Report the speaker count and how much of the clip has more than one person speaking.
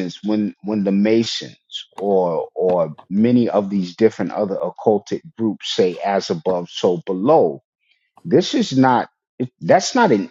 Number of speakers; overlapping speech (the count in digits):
1, no overlap